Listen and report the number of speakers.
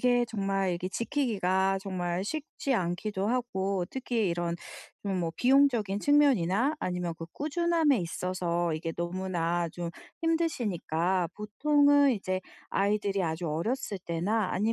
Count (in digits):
1